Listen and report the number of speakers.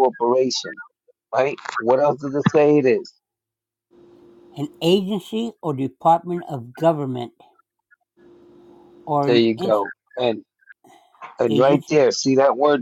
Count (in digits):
2